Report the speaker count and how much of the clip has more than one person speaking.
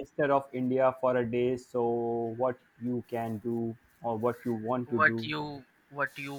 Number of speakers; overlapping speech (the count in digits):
2, about 6%